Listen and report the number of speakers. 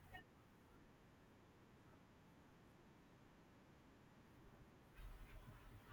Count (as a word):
zero